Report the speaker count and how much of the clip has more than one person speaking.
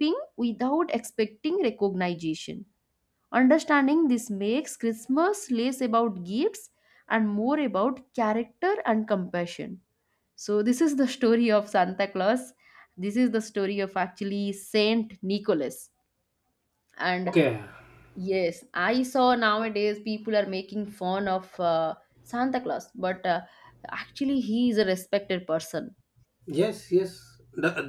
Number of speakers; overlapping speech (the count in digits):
2, about 1%